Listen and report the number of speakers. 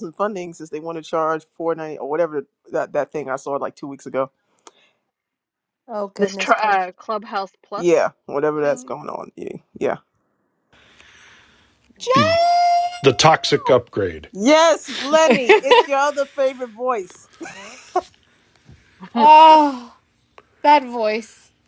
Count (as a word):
four